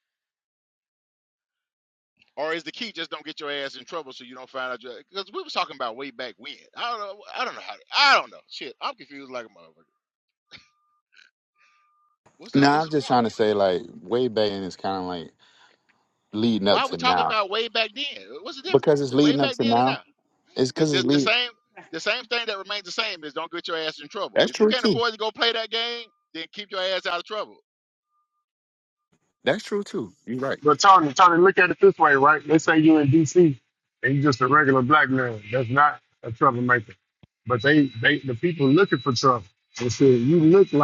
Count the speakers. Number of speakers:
3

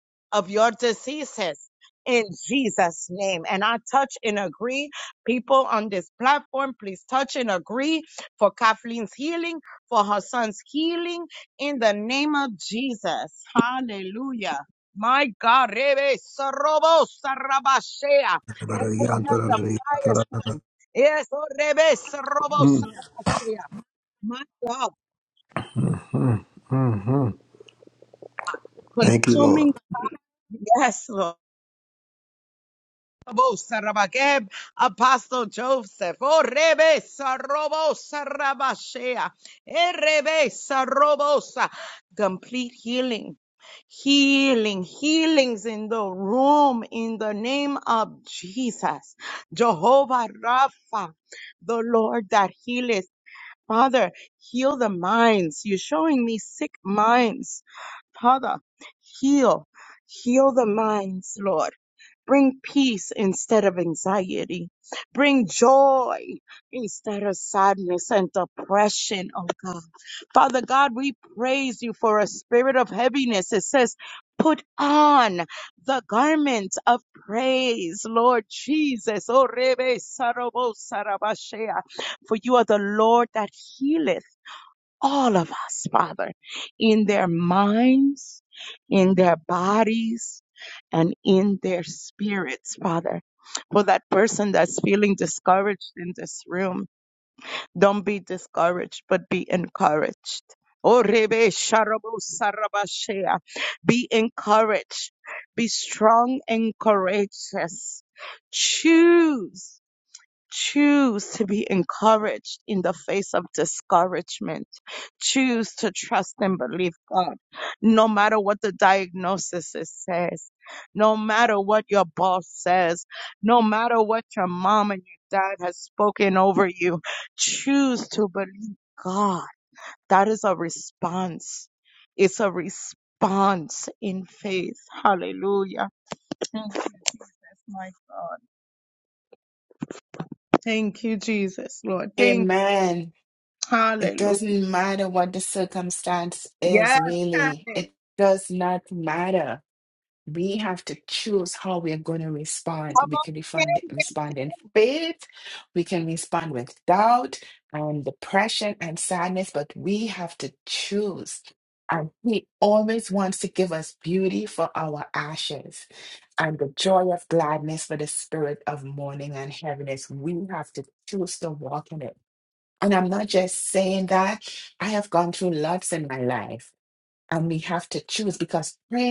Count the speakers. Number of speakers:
3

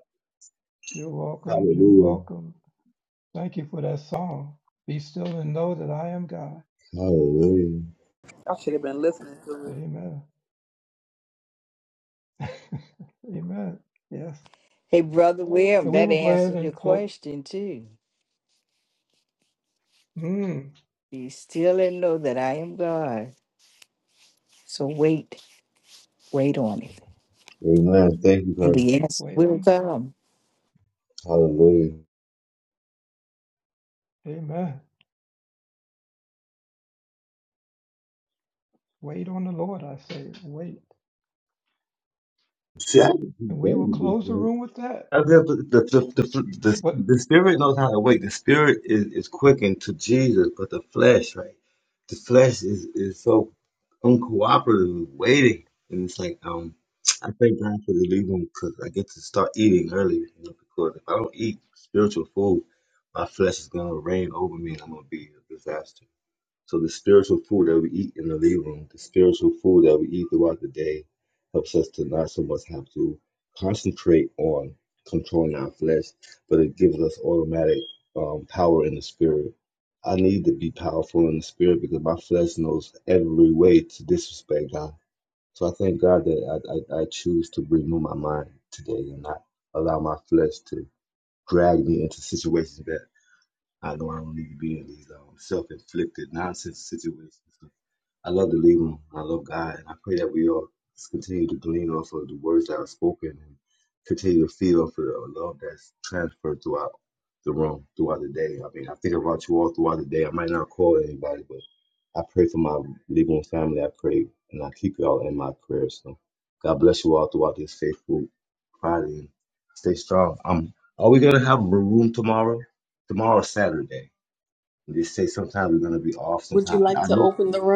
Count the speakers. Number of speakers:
5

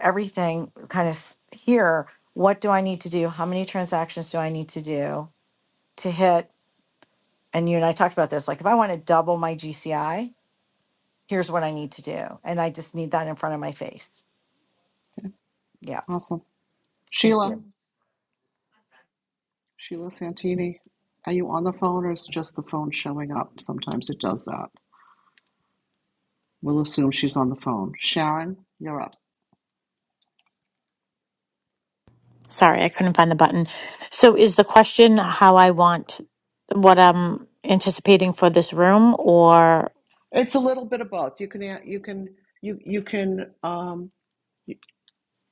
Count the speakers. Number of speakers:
3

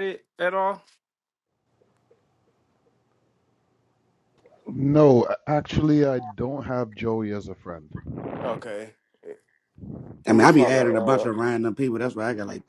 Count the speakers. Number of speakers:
3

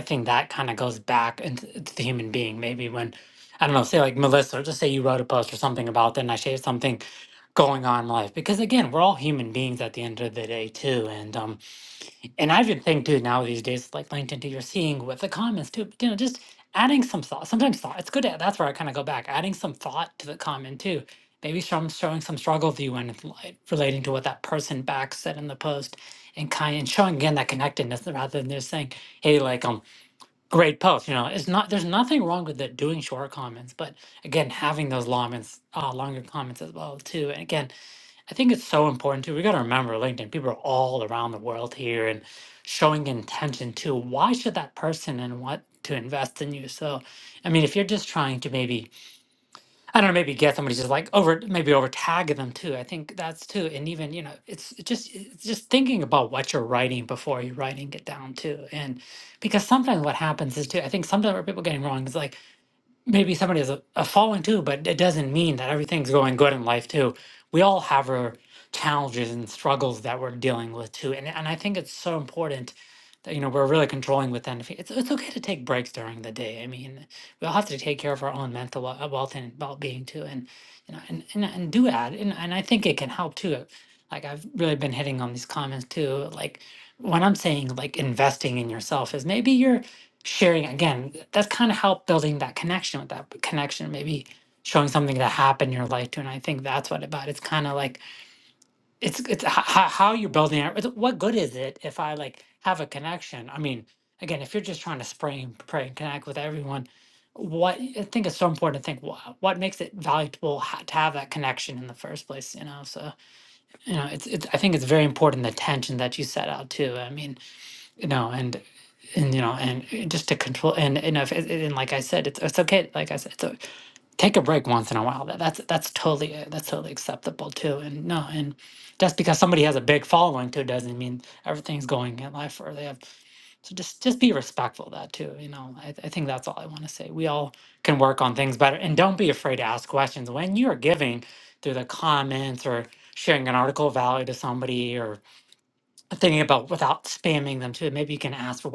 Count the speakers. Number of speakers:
1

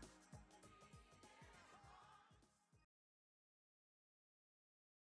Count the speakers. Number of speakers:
0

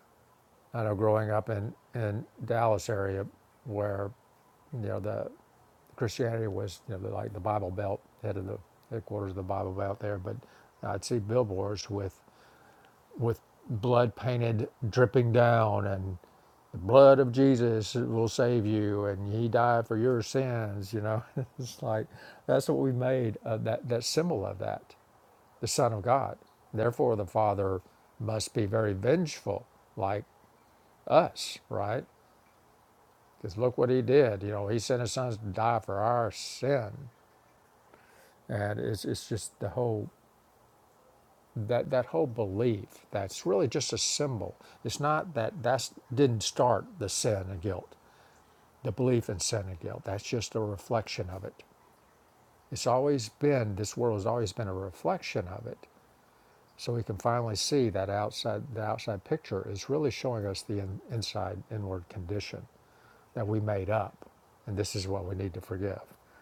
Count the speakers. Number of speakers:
1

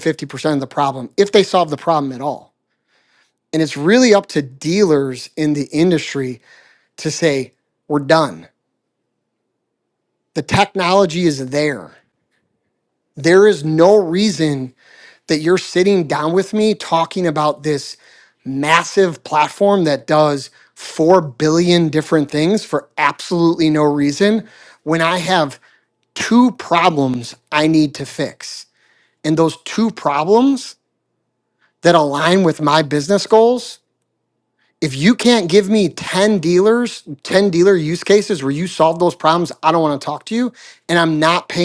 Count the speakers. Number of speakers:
1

